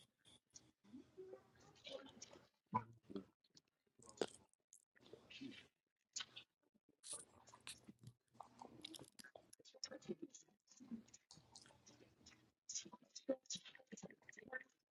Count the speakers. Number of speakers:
0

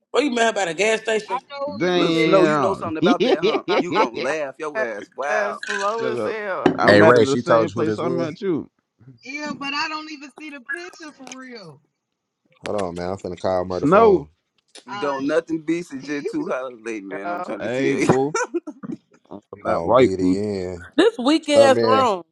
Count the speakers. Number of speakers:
6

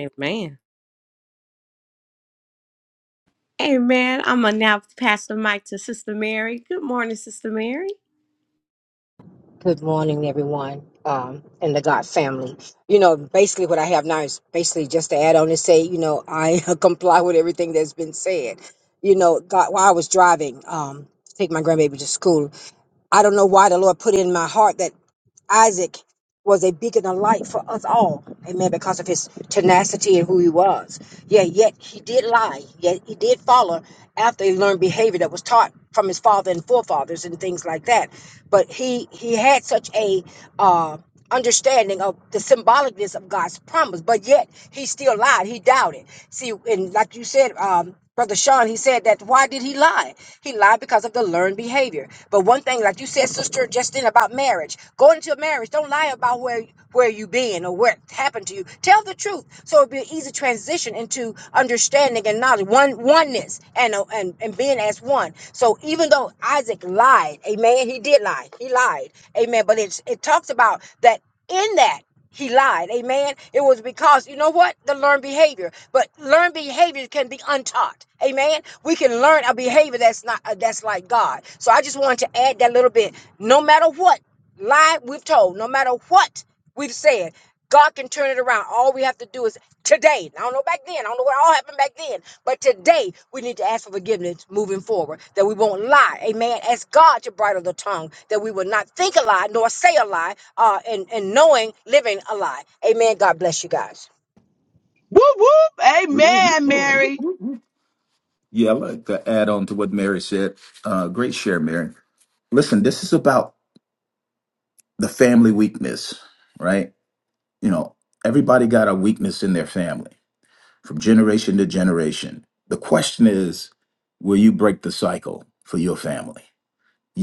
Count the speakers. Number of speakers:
4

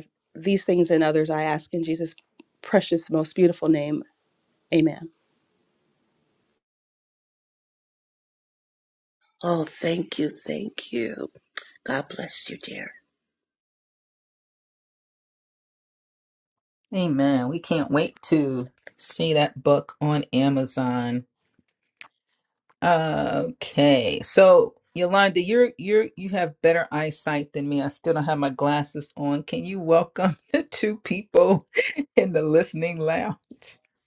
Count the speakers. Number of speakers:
3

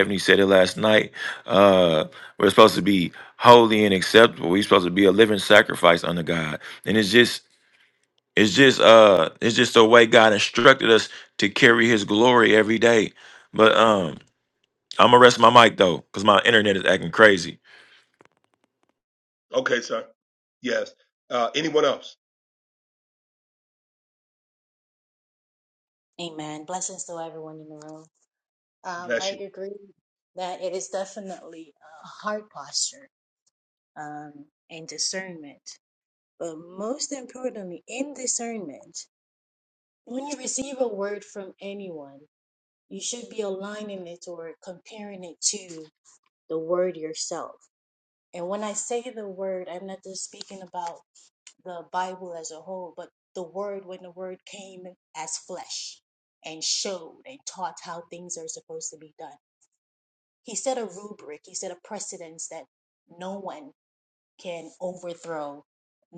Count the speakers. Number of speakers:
3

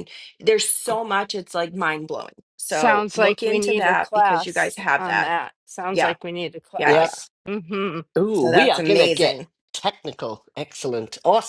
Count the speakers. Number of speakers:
3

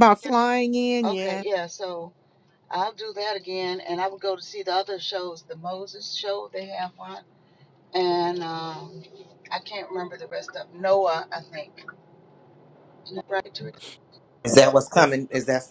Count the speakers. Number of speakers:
3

